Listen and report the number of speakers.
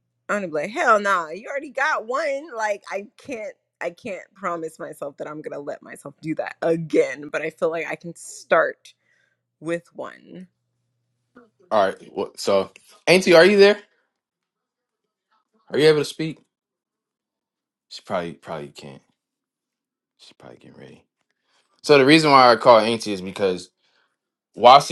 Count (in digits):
2